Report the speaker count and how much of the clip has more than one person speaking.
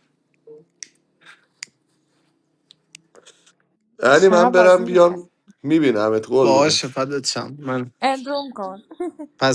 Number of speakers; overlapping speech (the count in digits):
3, about 14%